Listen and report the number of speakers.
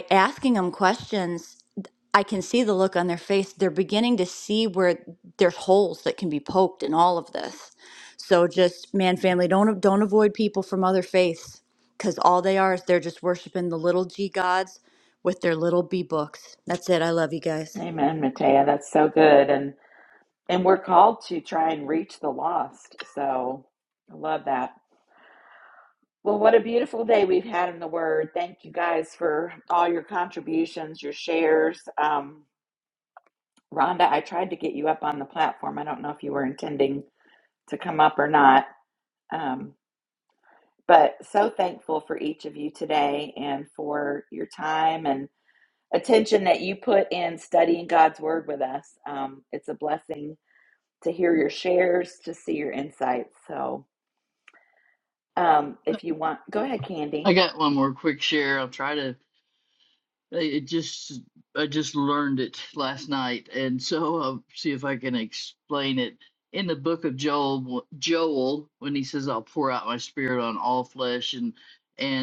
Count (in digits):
3